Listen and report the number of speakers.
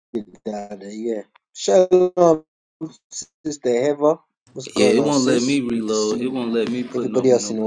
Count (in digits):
2